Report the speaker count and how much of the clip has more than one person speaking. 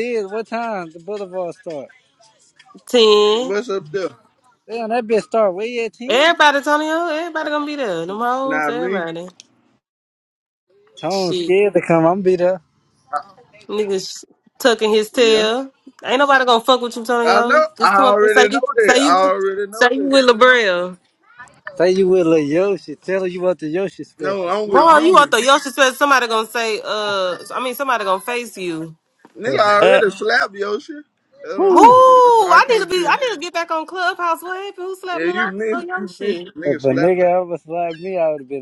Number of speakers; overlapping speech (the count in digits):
3, about 21%